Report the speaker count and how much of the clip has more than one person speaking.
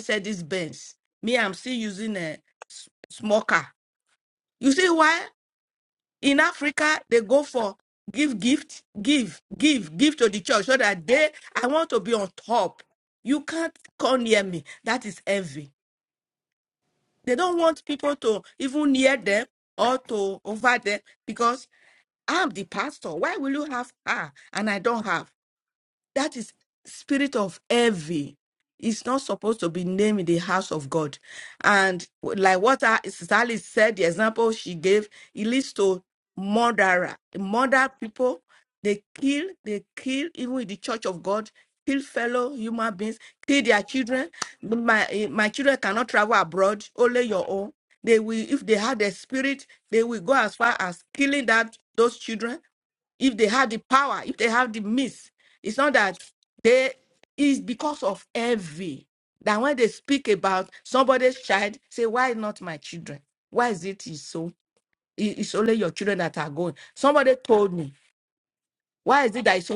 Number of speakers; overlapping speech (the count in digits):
1, no overlap